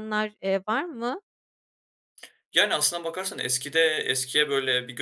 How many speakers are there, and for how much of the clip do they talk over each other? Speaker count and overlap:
2, no overlap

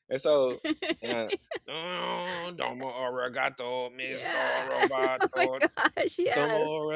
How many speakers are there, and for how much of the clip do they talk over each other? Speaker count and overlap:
2, about 22%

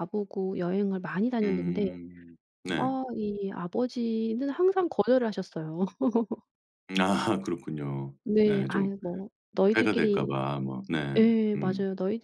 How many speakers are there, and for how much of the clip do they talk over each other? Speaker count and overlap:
2, about 19%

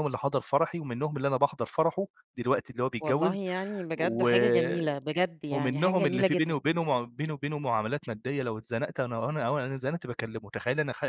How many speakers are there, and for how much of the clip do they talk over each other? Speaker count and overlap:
2, about 16%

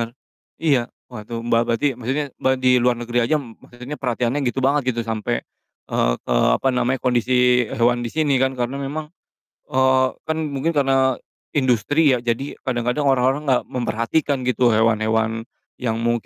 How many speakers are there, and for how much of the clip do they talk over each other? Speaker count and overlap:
1, no overlap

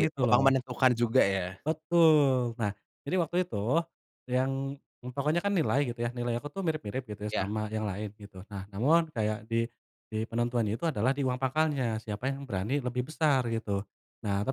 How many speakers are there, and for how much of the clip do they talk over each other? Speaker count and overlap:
2, about 5%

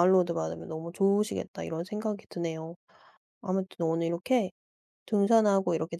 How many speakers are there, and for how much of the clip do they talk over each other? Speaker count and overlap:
1, no overlap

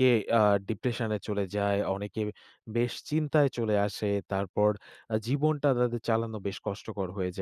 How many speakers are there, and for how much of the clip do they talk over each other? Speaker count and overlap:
1, no overlap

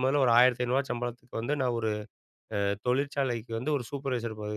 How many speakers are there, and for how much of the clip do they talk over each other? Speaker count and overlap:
1, no overlap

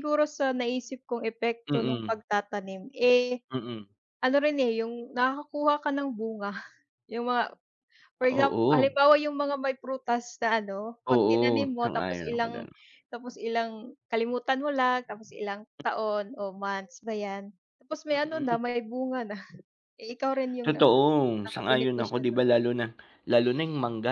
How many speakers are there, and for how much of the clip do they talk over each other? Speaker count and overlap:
2, about 18%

